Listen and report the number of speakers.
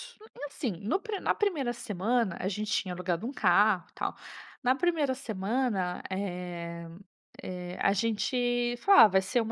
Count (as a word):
one